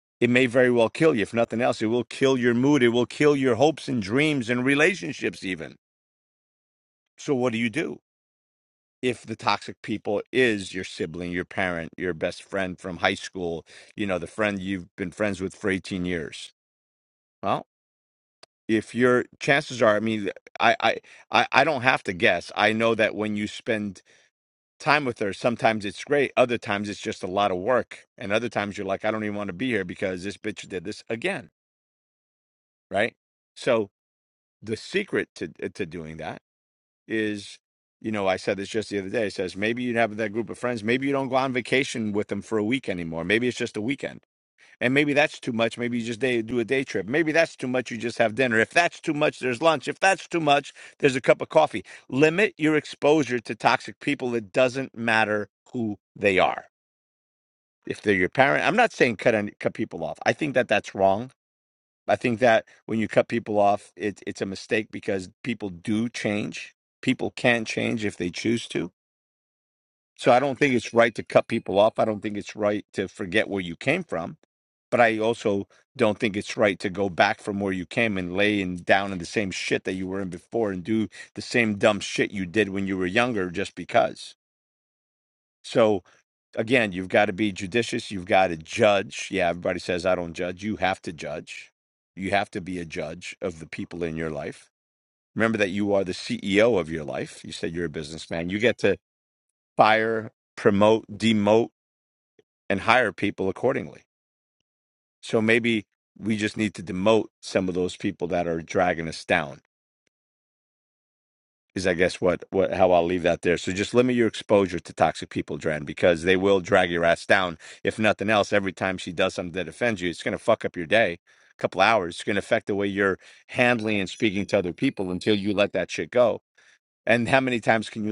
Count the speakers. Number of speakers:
1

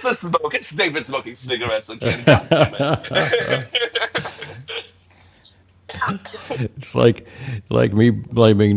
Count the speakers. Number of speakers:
2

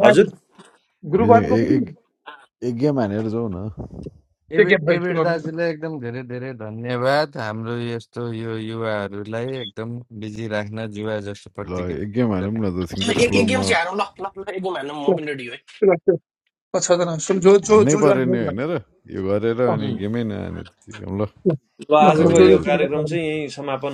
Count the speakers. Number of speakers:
5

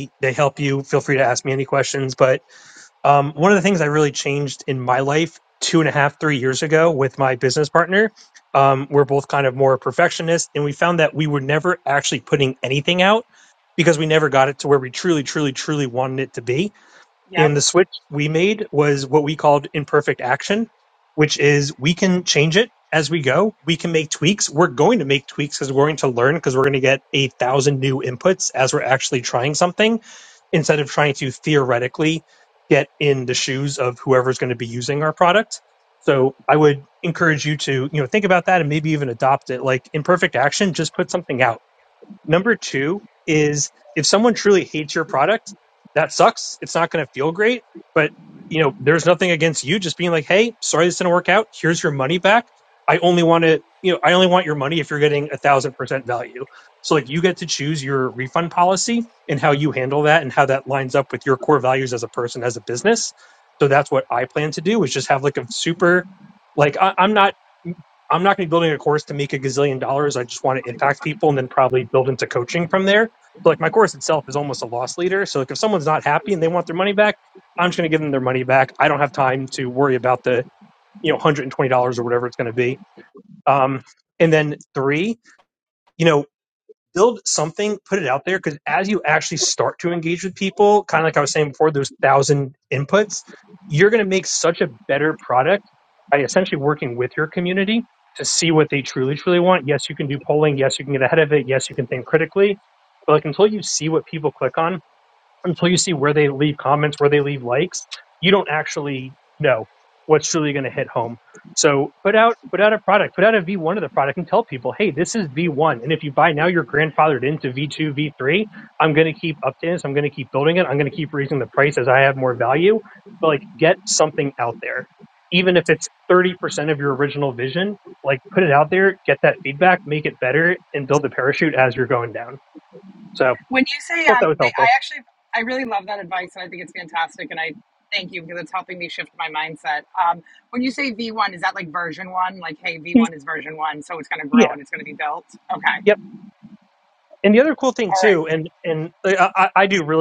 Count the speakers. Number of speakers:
2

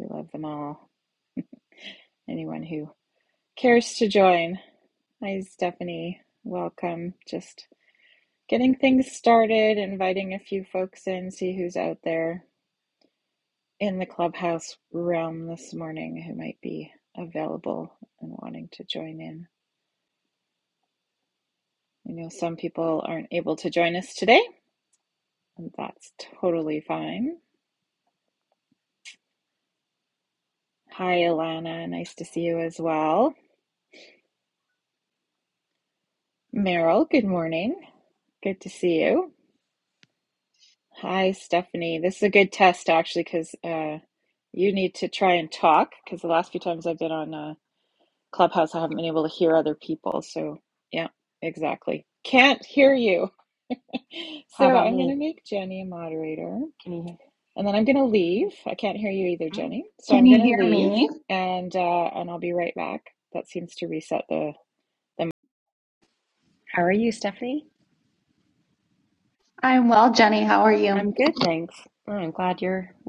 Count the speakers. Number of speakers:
3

